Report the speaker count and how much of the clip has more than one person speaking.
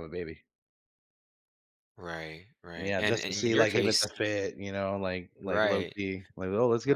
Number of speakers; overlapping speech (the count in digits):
2, about 27%